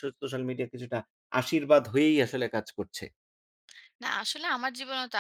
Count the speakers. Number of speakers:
2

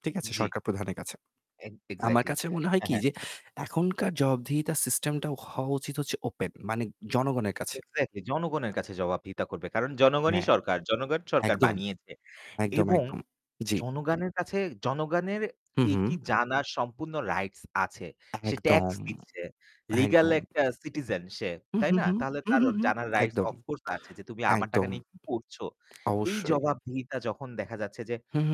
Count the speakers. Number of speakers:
2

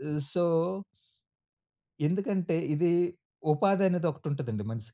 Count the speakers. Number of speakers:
1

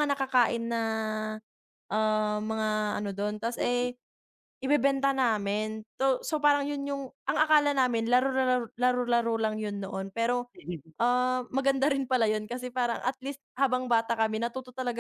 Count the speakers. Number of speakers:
1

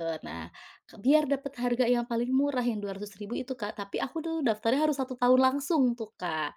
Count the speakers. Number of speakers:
1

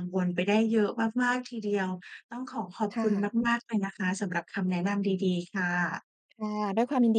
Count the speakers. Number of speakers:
2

